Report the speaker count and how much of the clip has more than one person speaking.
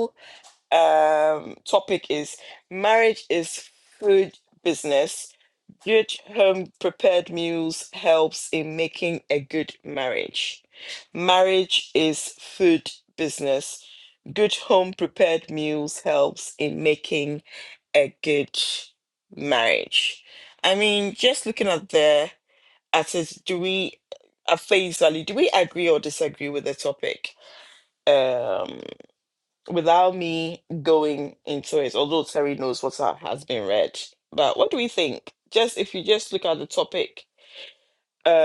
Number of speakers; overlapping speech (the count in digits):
1, no overlap